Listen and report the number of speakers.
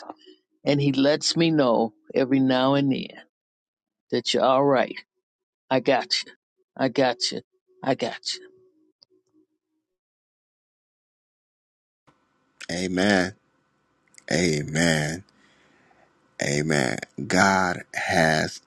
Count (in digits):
2